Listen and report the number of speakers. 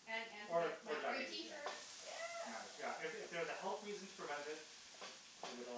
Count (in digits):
2